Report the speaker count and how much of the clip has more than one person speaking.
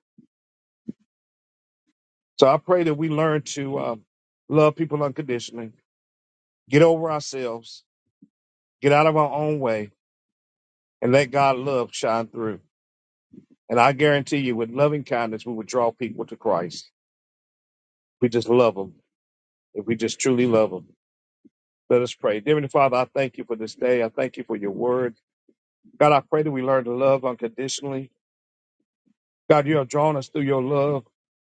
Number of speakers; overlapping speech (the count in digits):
1, no overlap